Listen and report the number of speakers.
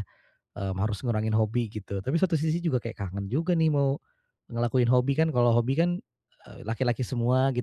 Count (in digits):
1